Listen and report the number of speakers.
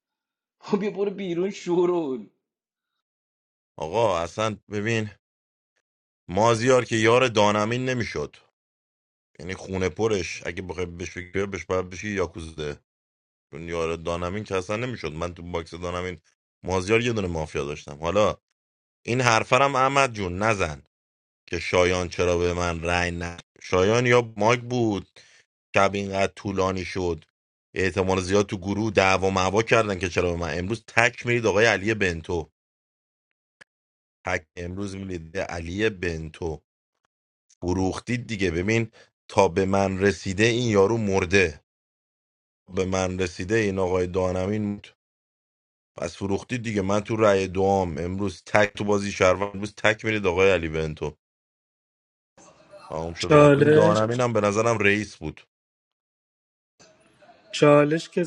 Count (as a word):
three